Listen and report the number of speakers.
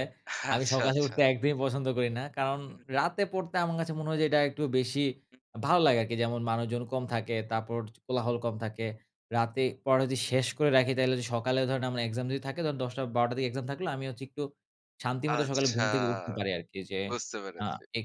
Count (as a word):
two